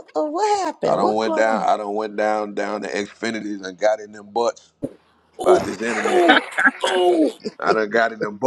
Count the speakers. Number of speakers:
three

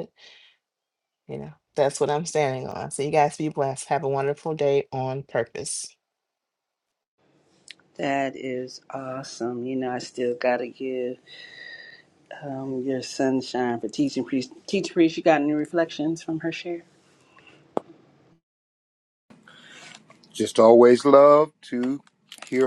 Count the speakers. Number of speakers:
three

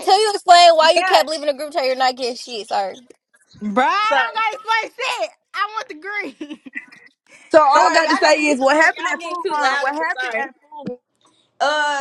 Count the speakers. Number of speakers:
four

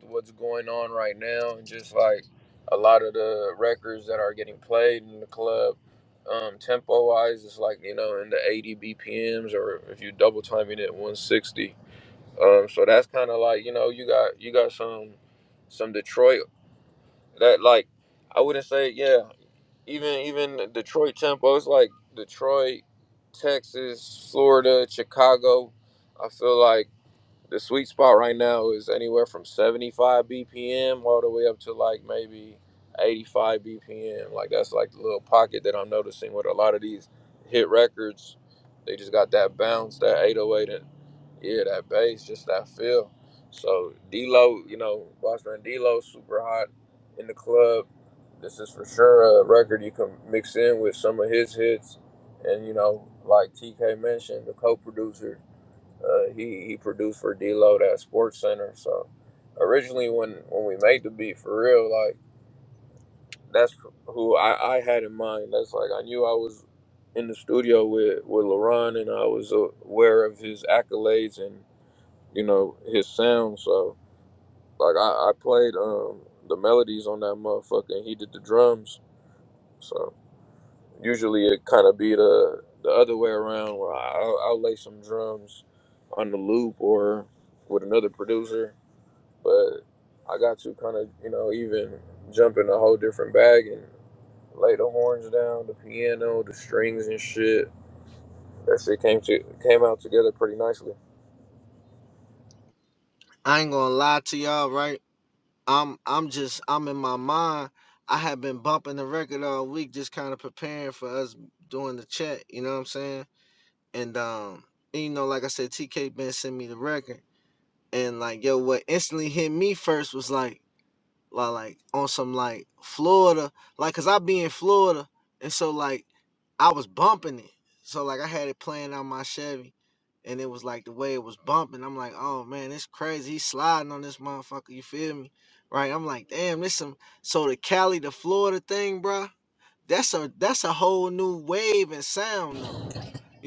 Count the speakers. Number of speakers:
two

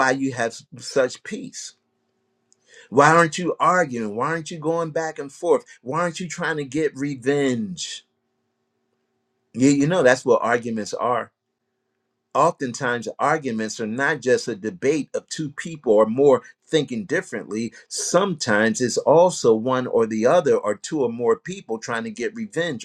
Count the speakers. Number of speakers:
one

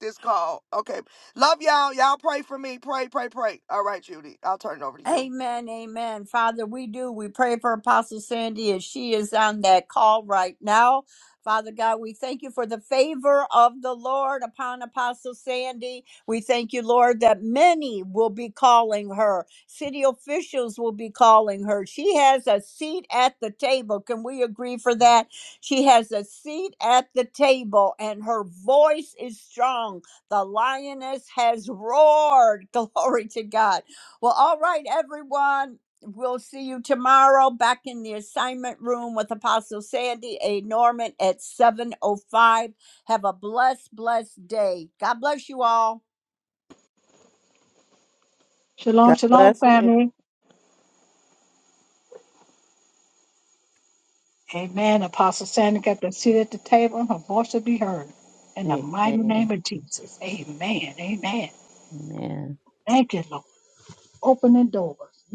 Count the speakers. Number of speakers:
four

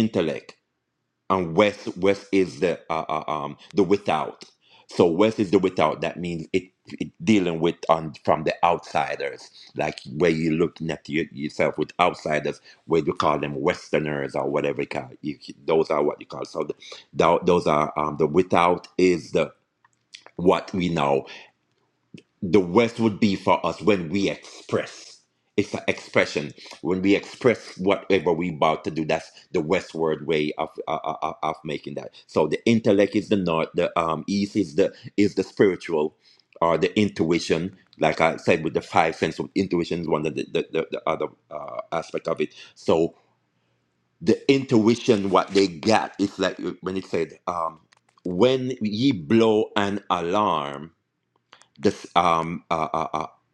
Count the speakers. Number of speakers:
one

